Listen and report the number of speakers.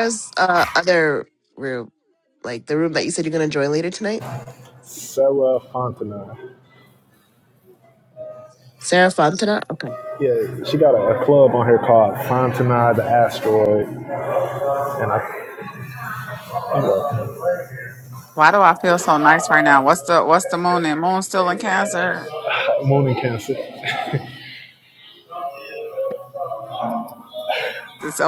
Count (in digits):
3